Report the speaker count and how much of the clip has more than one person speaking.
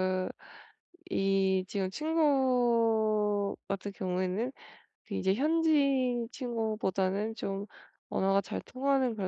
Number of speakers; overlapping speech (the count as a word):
one, no overlap